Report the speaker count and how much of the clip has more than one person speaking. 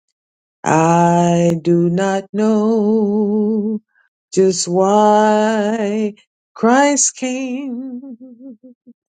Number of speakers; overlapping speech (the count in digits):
1, no overlap